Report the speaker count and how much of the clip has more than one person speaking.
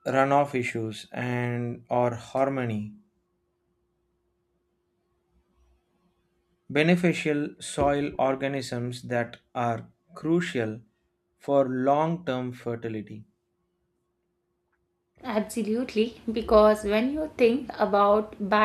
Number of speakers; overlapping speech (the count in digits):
2, no overlap